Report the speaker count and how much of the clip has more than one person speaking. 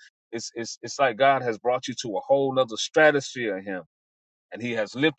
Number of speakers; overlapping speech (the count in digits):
1, no overlap